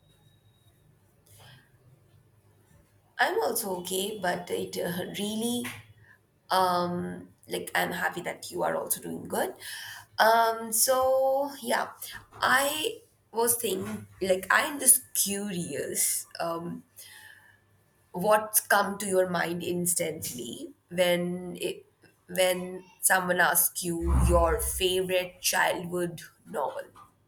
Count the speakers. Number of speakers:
one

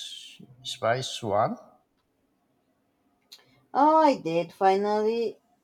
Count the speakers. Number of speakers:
two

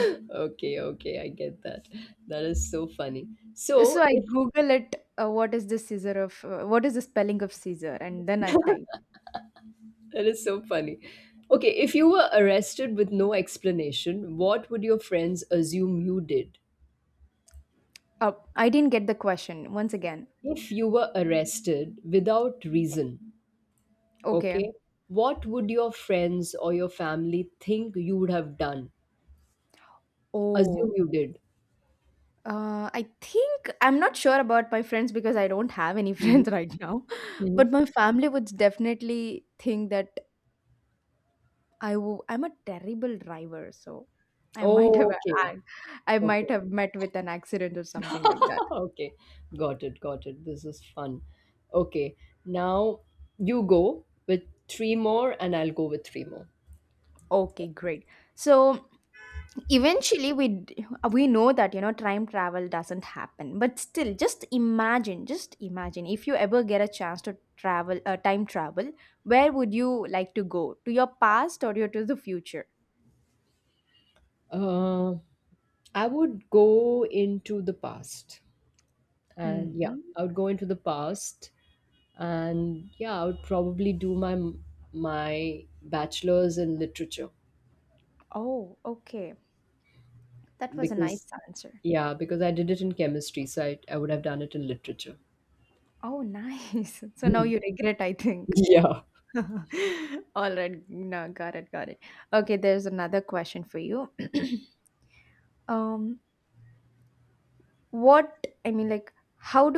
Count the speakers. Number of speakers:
two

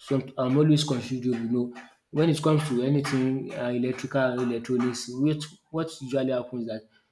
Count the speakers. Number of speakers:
one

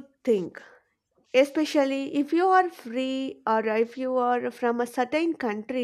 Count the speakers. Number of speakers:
one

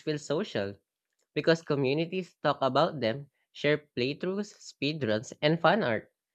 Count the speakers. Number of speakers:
one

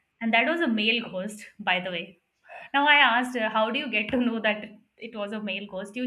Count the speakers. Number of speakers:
one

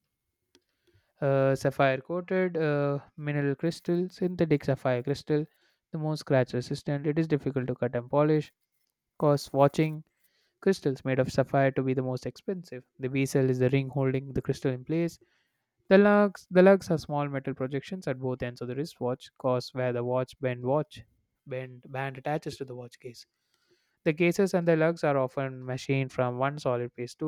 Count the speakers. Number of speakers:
one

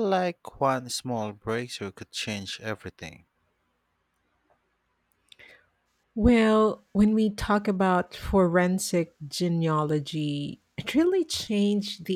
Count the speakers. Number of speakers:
two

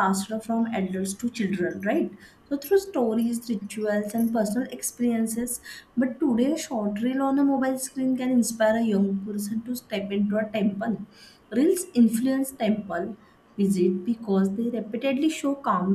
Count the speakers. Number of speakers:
one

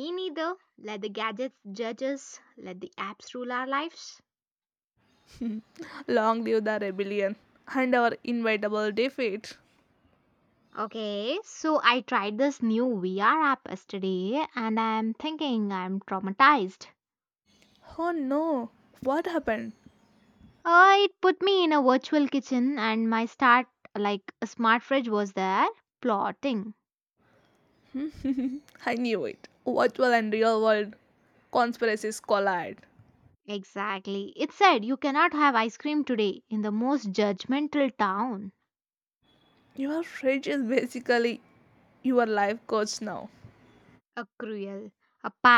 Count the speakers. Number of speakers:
two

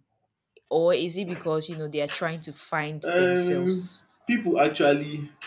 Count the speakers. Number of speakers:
two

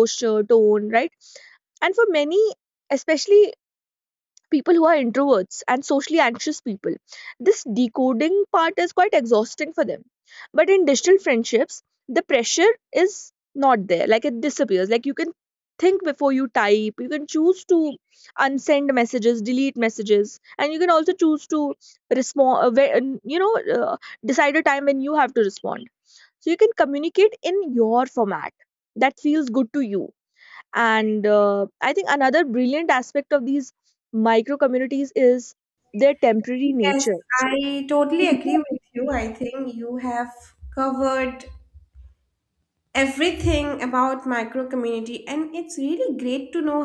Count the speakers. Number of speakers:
two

